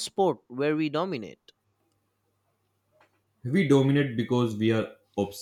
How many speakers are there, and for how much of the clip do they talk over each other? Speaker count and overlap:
two, no overlap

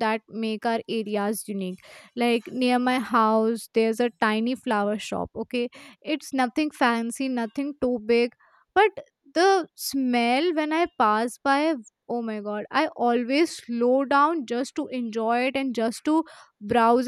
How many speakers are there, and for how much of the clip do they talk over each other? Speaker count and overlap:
one, no overlap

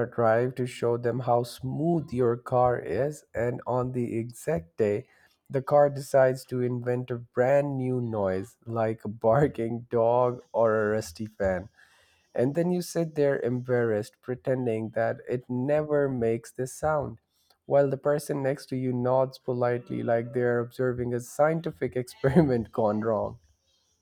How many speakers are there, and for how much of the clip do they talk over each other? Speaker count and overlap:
one, no overlap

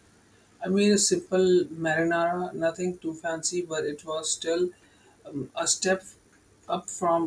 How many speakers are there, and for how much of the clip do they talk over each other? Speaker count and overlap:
one, no overlap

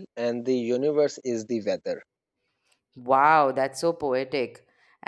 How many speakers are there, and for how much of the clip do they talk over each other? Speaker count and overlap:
two, no overlap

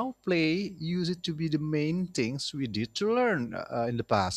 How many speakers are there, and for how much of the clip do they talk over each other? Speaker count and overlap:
one, no overlap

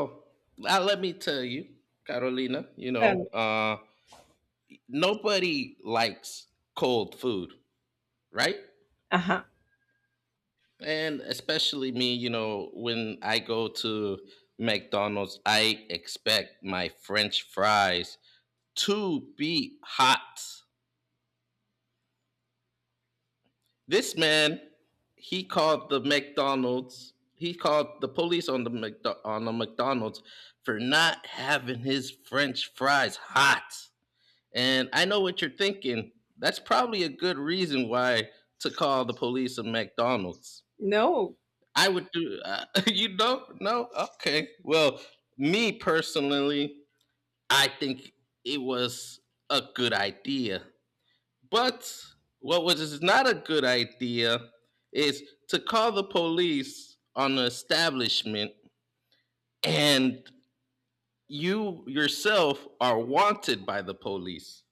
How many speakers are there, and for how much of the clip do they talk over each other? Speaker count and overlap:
two, under 1%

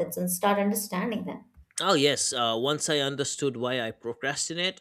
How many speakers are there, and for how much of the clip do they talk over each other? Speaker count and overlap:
two, no overlap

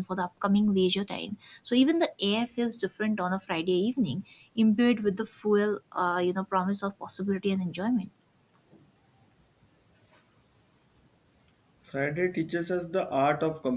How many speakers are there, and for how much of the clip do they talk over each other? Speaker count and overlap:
two, no overlap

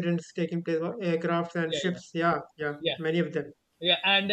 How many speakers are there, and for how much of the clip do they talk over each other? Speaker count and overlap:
two, about 11%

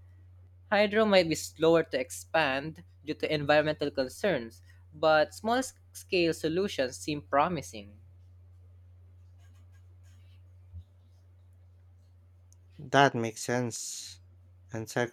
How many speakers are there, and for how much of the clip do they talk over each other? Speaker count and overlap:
two, no overlap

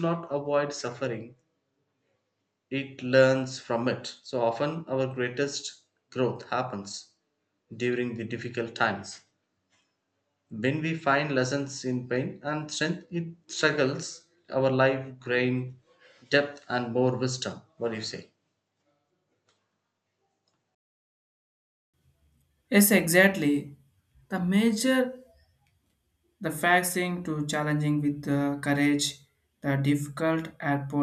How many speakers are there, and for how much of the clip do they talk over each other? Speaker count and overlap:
two, no overlap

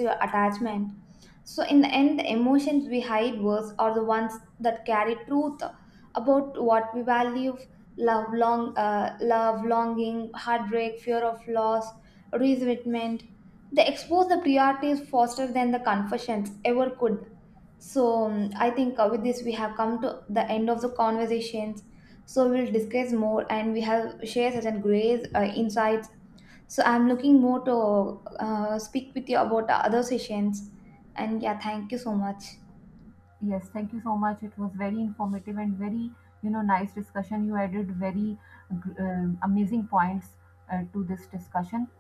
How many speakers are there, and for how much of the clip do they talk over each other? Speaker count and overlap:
two, no overlap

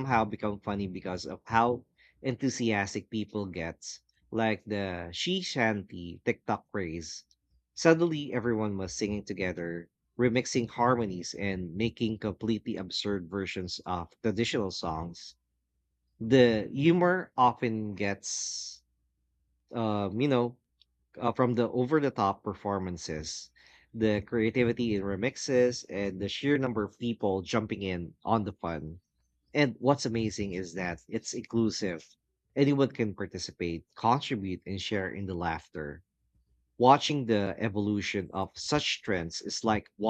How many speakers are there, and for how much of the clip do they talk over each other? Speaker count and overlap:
one, no overlap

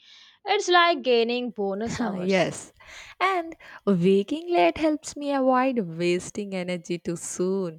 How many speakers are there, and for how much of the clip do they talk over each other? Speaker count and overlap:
two, about 3%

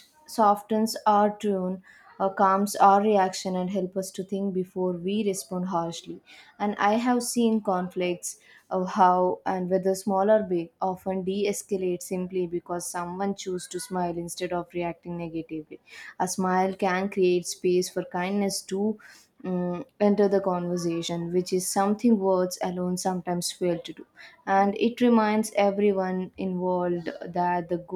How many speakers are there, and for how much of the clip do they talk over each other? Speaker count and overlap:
one, no overlap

